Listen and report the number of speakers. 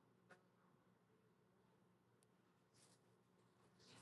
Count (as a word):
zero